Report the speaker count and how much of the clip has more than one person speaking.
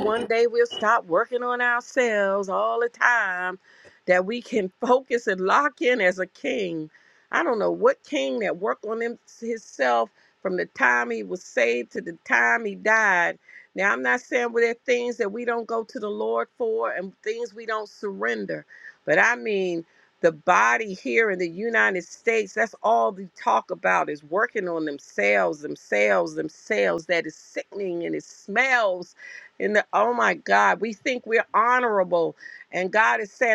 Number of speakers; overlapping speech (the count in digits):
1, no overlap